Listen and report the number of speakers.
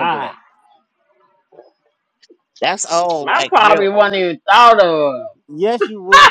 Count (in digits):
3